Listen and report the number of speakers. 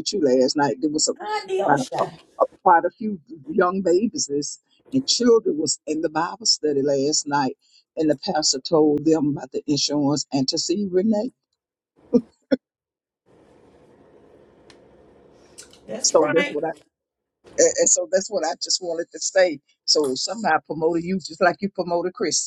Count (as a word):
two